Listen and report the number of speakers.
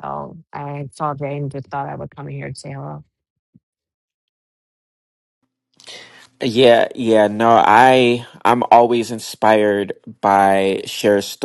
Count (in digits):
2